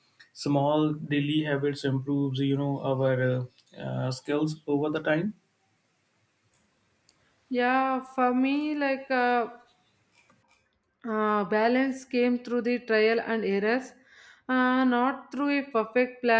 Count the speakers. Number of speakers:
2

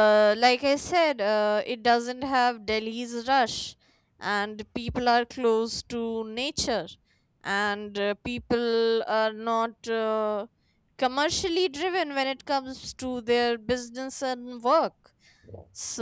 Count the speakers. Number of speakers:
1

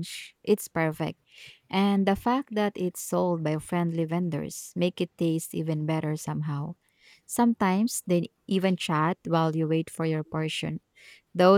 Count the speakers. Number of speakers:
1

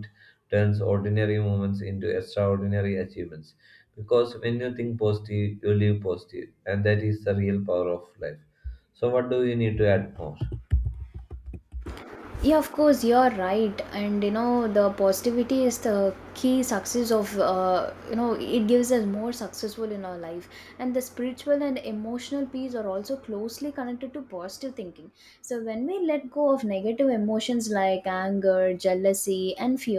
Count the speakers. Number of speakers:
2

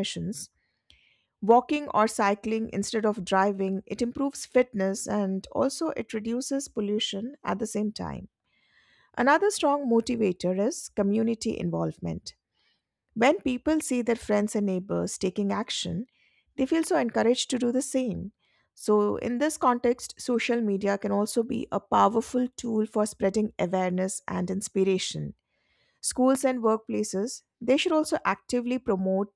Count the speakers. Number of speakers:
1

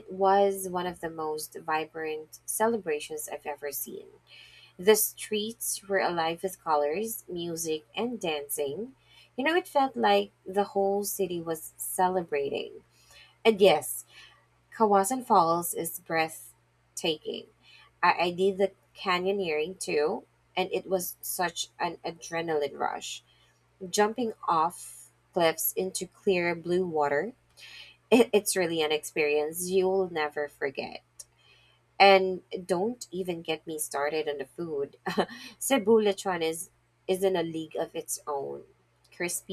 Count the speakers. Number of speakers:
1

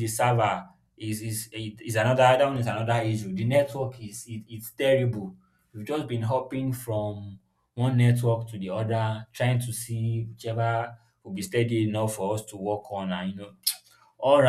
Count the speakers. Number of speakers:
1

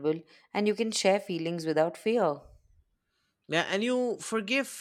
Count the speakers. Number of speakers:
2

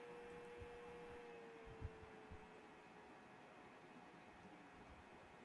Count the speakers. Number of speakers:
0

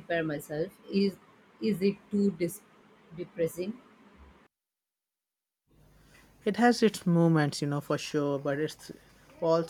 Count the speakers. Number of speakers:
2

